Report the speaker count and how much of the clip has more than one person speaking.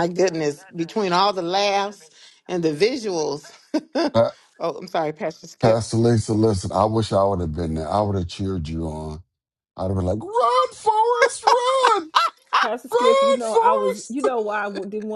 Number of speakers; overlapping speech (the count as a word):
three, about 11%